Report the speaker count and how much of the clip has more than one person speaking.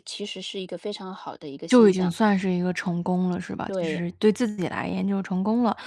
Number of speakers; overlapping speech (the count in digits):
2, about 13%